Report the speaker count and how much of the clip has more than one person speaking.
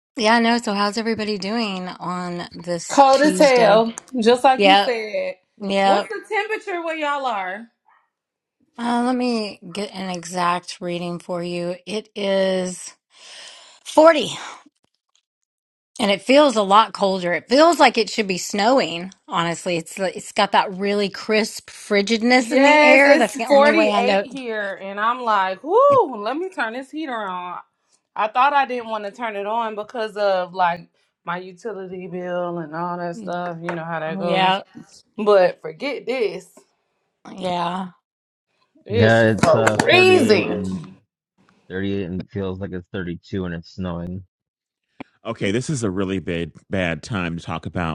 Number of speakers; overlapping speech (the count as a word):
four, about 9%